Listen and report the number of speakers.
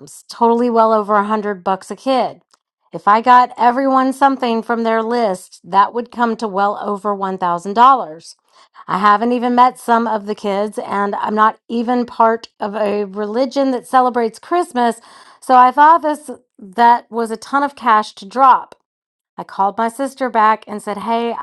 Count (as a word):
one